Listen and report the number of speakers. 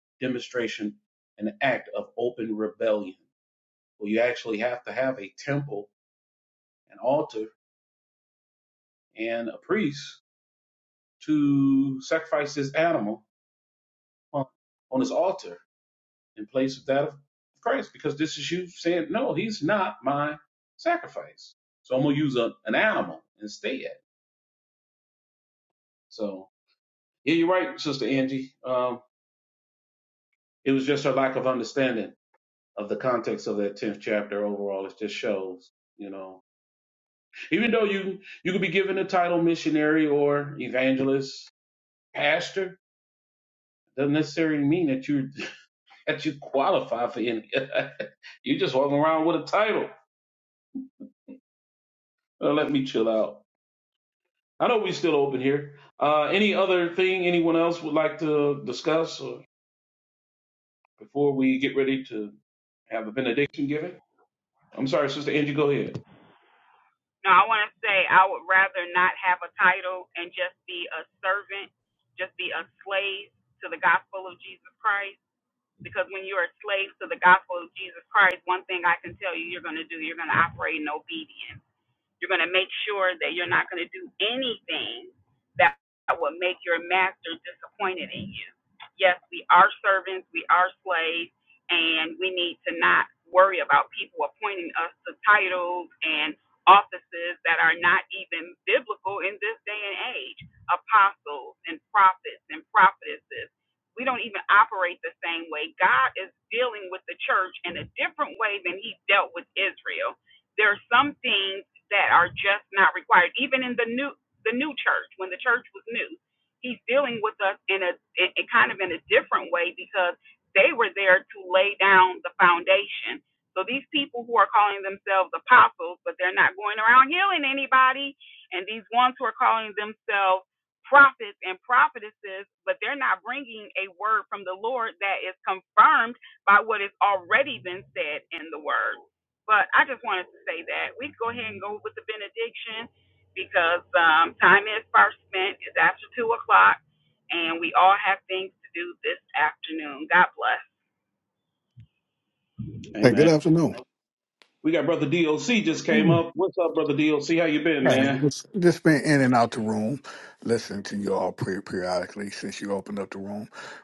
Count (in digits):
3